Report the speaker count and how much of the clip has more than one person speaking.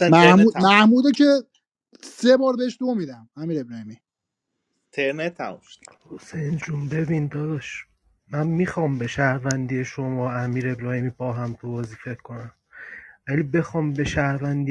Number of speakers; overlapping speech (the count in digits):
3, about 4%